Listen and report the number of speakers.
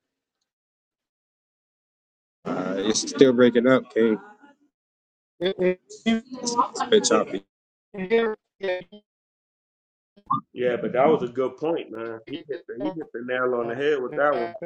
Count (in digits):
3